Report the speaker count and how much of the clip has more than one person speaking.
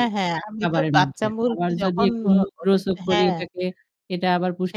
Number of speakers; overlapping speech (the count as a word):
two, about 47%